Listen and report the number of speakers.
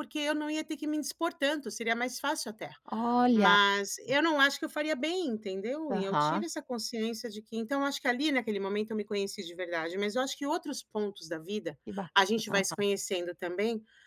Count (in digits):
2